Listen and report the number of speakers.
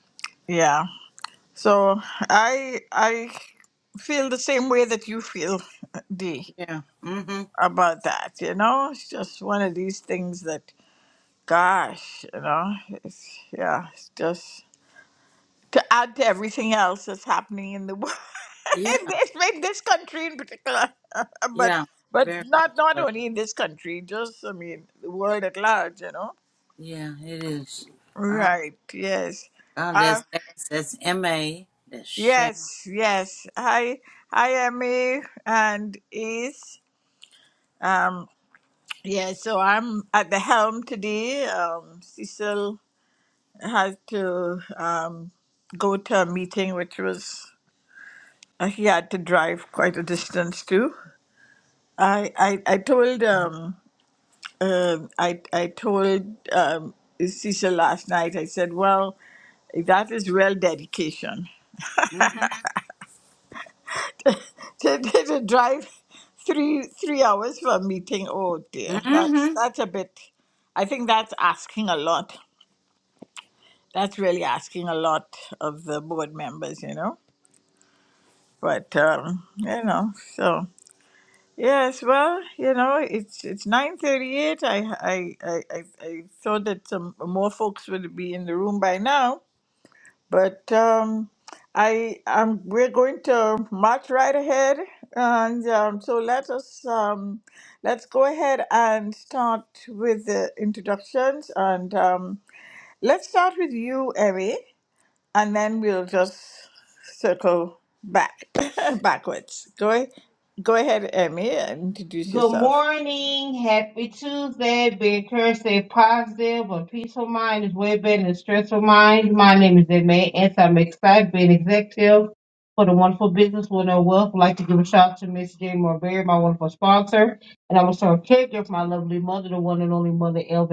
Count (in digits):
3